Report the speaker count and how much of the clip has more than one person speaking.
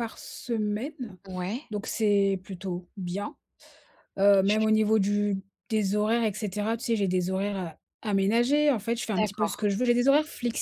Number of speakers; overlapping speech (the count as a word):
two, about 7%